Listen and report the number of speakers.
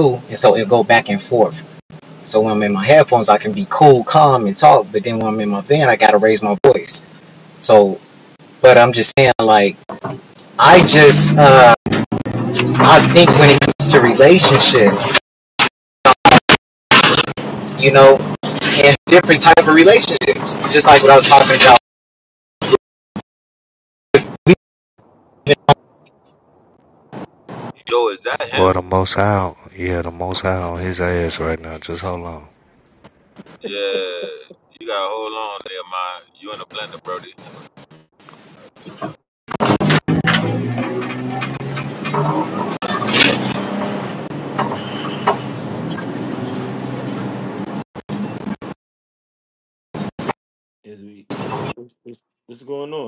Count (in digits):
4